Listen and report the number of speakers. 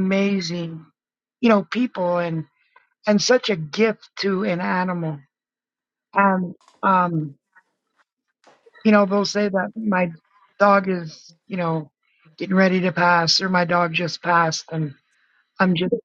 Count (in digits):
1